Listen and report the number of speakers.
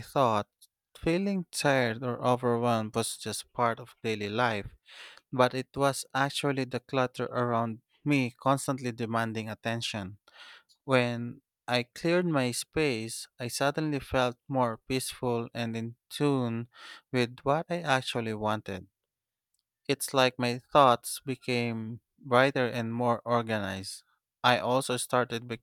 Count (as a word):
one